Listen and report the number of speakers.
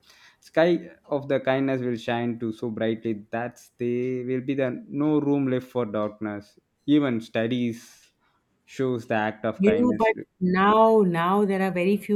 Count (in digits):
2